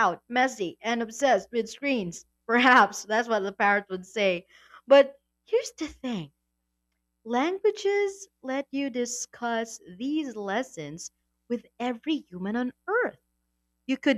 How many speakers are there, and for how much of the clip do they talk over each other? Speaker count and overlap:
1, no overlap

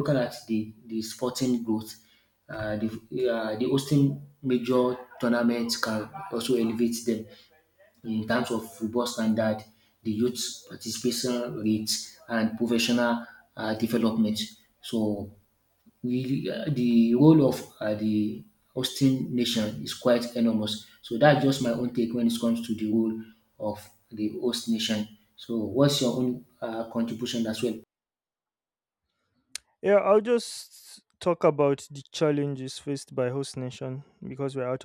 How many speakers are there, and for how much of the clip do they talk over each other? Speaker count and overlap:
2, no overlap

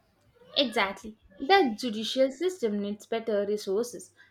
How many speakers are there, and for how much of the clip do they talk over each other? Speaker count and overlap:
1, no overlap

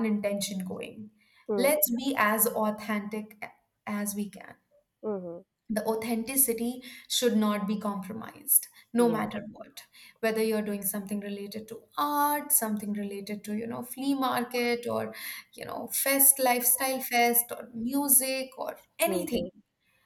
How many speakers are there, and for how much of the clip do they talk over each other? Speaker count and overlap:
2, about 5%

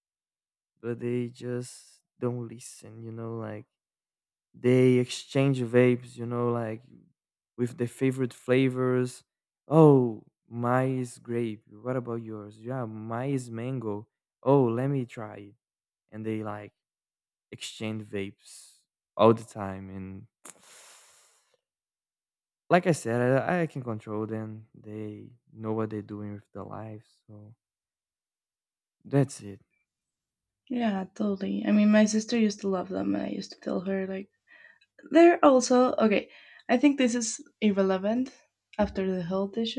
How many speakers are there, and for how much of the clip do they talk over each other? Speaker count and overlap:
2, no overlap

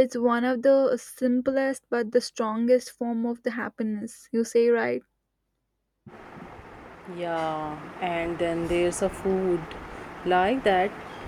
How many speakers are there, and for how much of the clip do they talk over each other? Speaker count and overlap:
2, no overlap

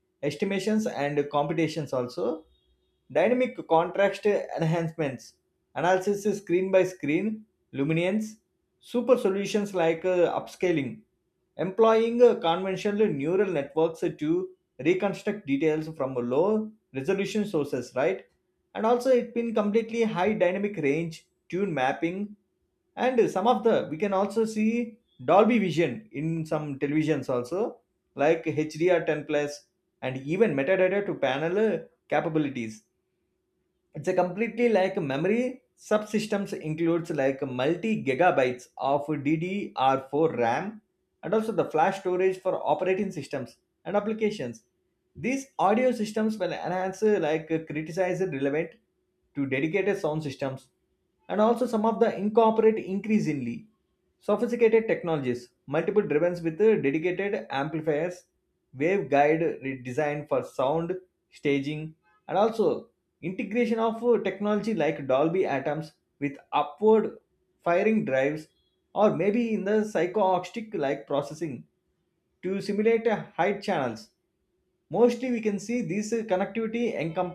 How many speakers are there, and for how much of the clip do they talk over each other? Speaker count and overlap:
1, no overlap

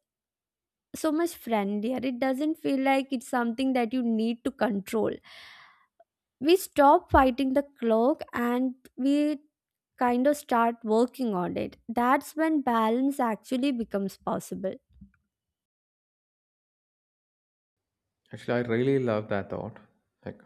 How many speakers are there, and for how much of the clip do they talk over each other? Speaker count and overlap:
2, no overlap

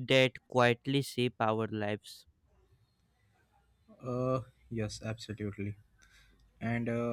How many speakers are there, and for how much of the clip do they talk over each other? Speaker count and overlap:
2, no overlap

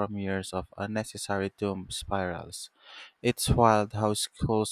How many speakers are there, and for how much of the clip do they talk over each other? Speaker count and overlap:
1, no overlap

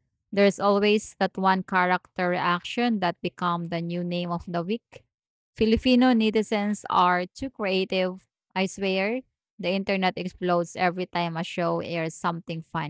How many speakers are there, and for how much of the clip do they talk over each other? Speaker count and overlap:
1, no overlap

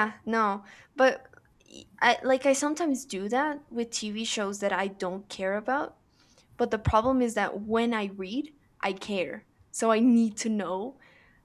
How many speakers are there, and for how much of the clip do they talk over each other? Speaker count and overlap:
1, no overlap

